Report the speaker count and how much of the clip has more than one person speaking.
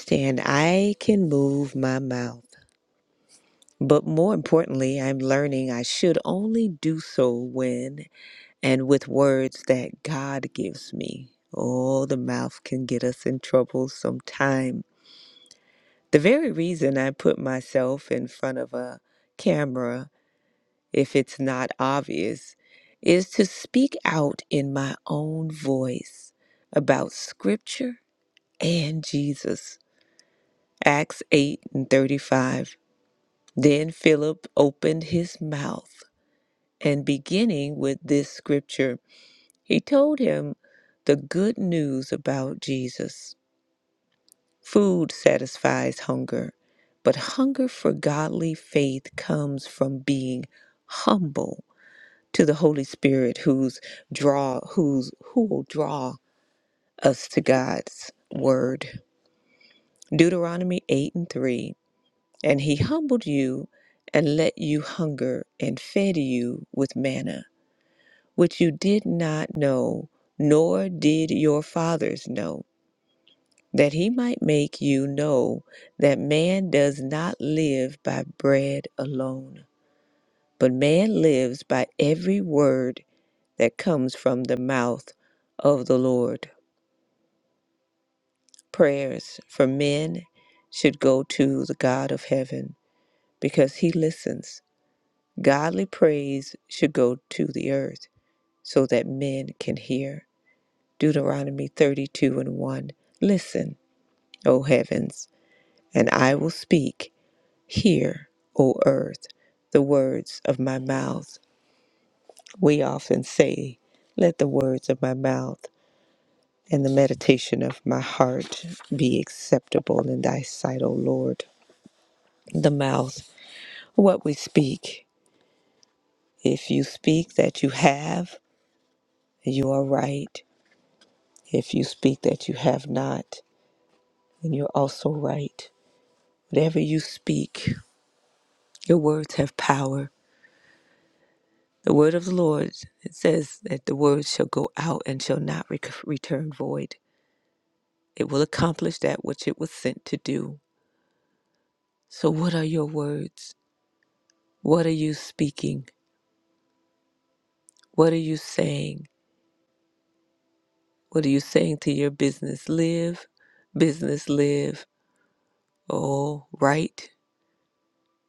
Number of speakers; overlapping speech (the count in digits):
1, no overlap